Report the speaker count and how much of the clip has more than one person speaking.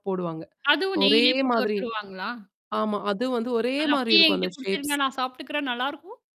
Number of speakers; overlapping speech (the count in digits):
2, about 29%